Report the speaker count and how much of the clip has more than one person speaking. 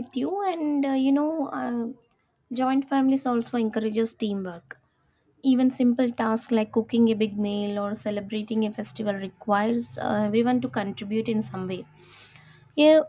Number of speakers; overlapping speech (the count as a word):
one, no overlap